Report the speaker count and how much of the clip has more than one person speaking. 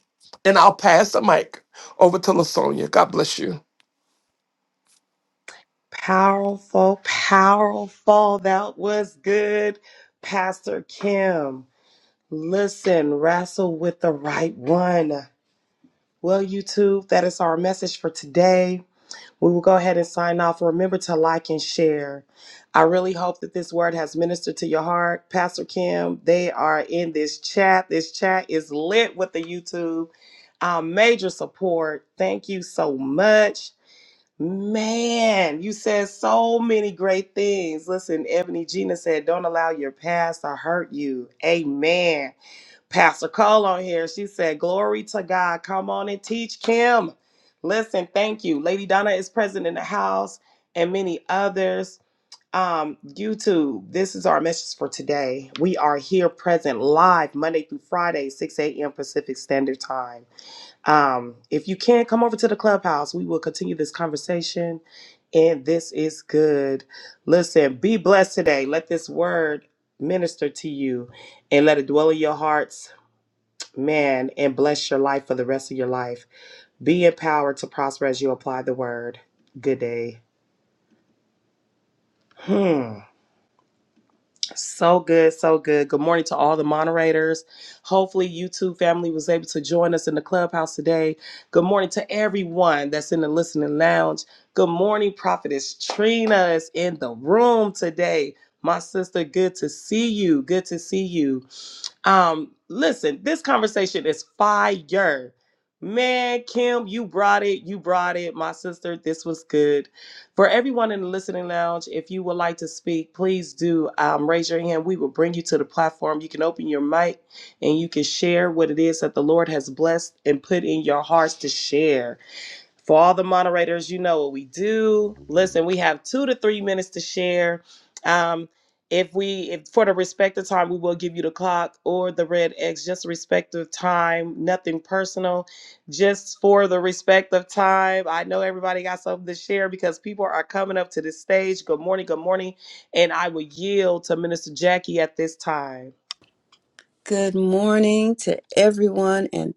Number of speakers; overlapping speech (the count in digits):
3, no overlap